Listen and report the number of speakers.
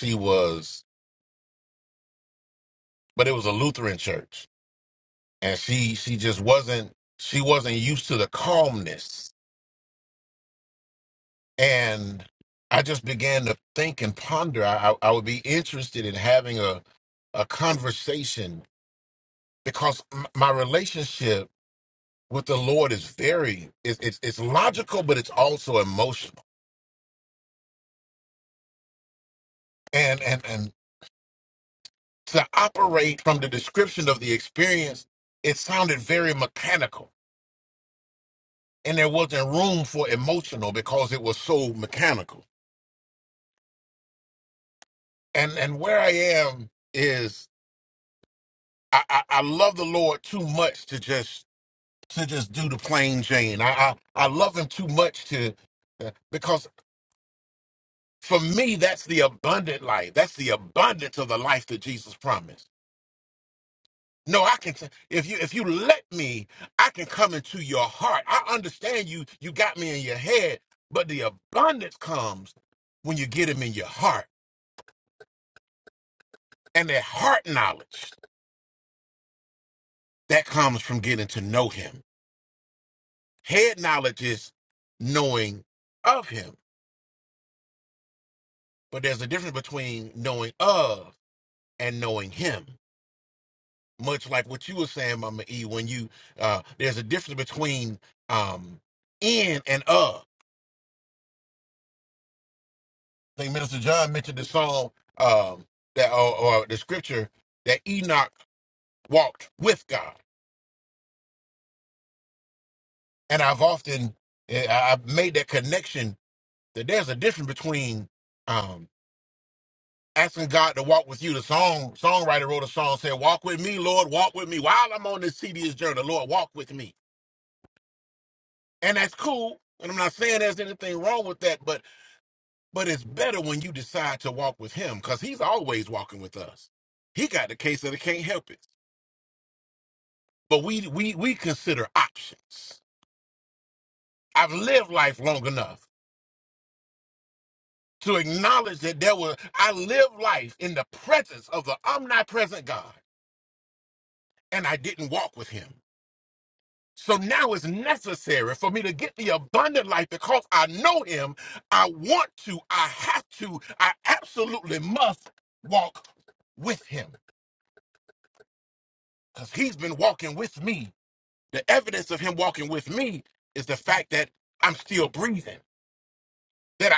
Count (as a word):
one